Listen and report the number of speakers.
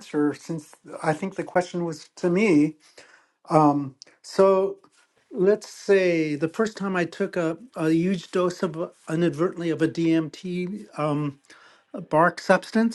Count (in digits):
1